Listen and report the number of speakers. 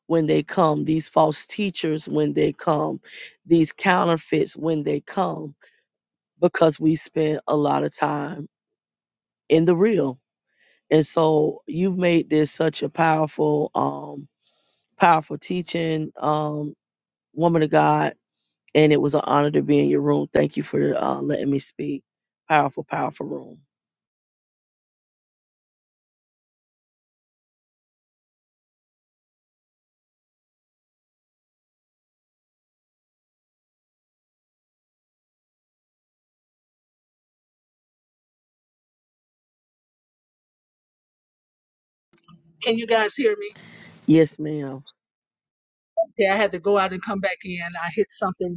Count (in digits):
2